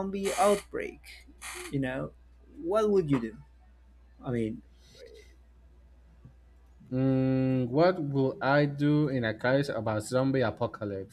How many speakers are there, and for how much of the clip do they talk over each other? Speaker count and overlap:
2, no overlap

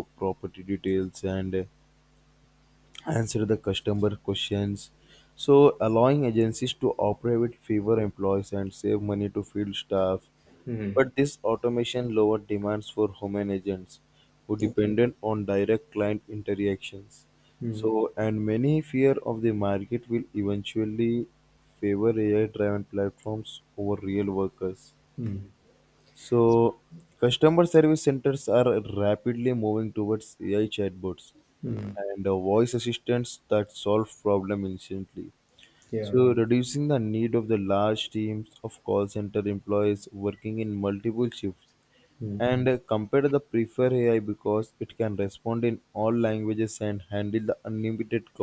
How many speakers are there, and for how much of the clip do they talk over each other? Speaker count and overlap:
2, about 1%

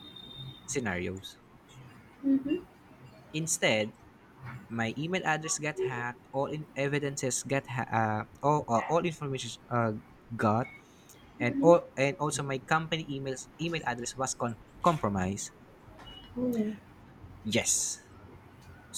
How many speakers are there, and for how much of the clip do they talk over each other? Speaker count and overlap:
2, about 2%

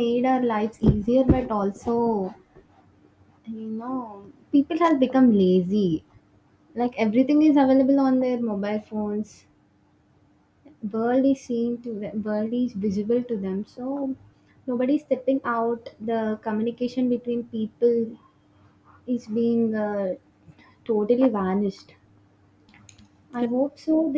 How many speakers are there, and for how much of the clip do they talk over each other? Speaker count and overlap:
1, no overlap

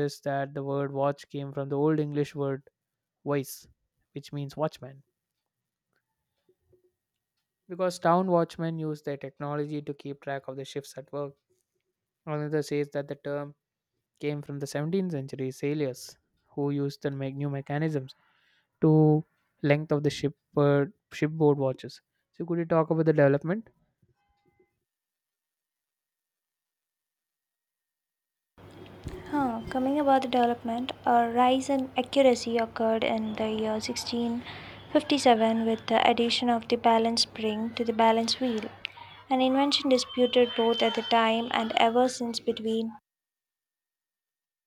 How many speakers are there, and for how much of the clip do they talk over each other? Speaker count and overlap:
2, no overlap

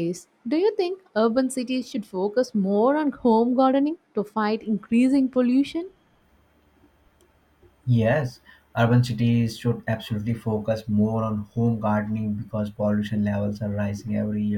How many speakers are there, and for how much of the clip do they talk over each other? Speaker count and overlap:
2, no overlap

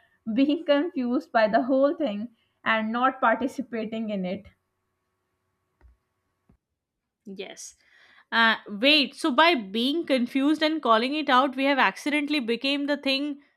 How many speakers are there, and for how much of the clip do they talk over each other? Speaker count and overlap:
2, no overlap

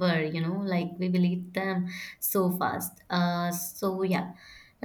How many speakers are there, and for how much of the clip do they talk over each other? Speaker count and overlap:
1, no overlap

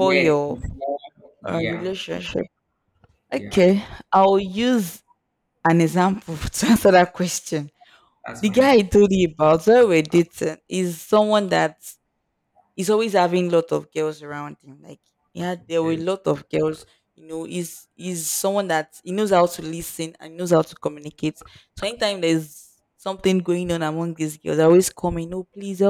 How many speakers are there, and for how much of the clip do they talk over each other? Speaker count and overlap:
2, about 8%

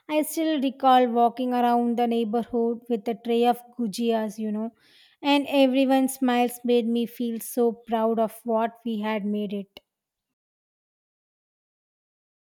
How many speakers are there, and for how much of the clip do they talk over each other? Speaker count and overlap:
1, no overlap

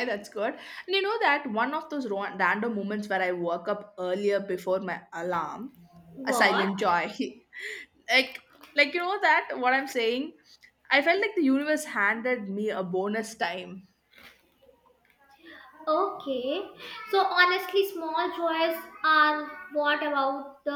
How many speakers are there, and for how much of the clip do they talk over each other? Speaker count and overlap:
2, about 2%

